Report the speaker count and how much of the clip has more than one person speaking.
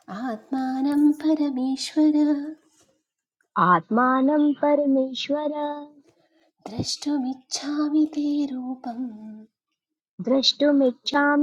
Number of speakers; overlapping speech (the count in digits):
2, no overlap